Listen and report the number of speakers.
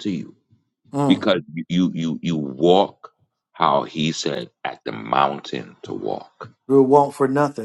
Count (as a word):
two